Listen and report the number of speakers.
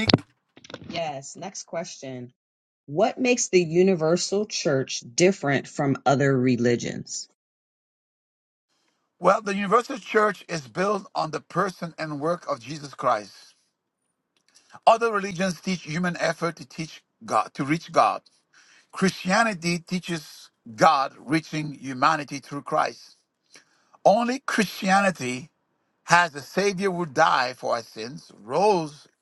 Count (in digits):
2